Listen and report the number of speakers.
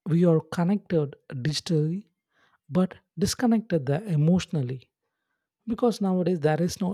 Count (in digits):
1